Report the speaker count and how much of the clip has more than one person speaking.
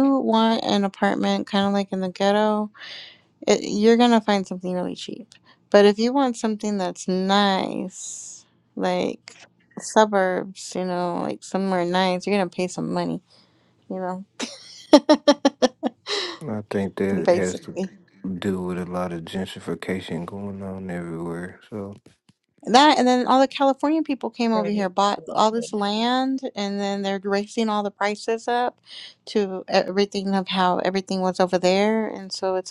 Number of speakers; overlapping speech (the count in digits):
2, about 2%